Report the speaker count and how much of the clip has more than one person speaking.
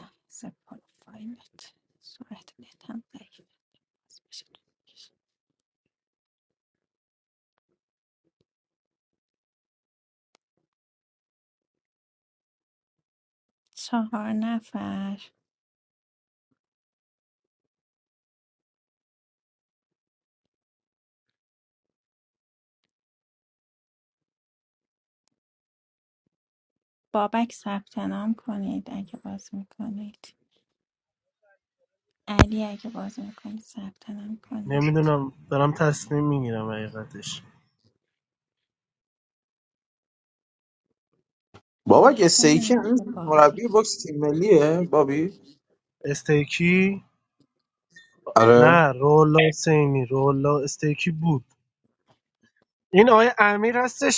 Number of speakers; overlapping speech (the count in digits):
3, about 4%